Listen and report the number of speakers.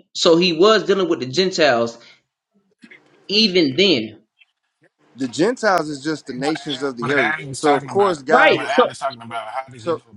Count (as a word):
three